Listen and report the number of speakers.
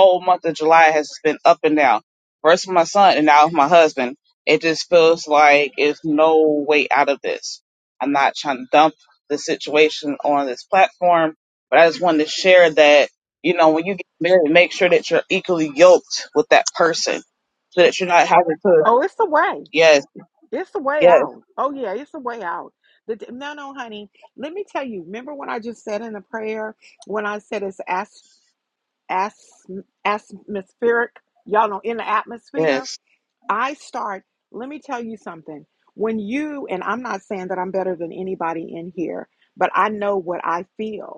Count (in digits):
2